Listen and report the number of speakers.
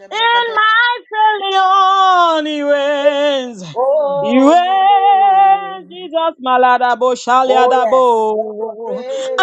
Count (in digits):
2